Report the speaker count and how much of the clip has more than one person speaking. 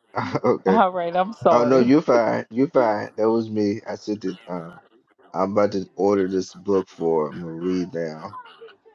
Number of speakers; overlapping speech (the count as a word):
two, about 6%